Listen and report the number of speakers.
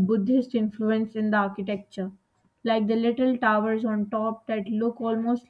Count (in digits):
1